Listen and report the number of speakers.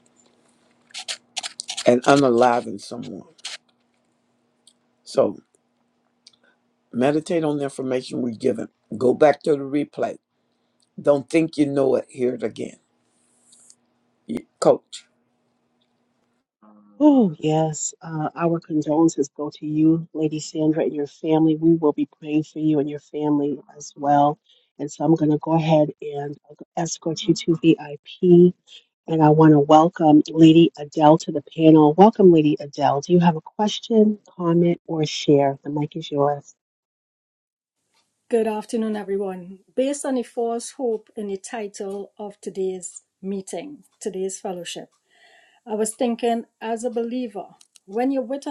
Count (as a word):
three